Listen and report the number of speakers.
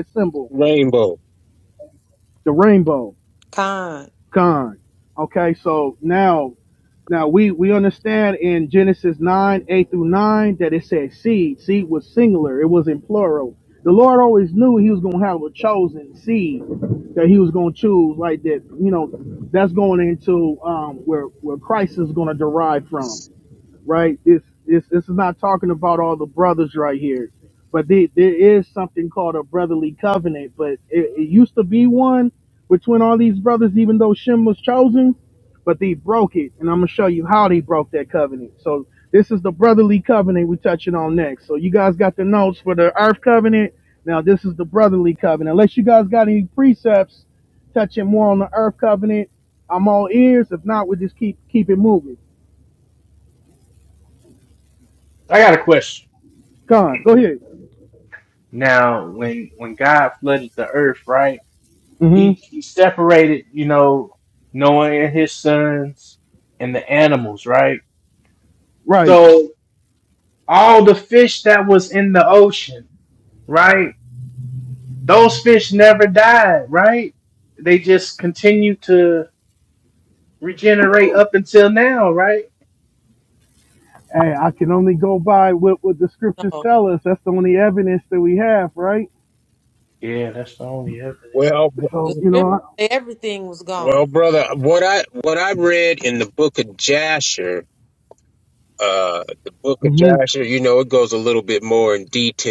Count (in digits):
4